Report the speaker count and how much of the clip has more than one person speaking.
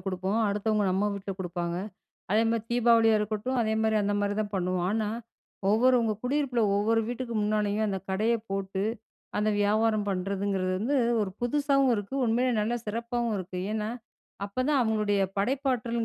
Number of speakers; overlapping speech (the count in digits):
1, no overlap